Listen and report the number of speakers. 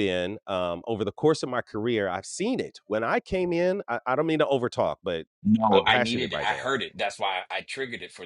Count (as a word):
two